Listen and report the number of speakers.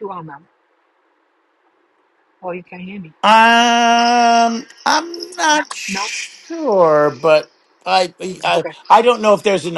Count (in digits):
2